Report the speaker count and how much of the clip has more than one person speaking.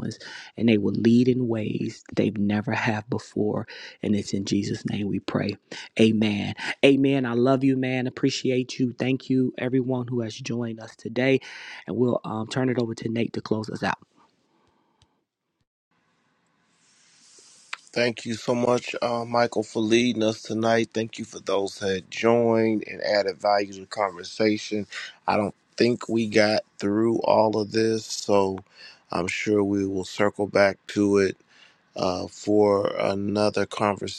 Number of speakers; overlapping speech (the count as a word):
two, no overlap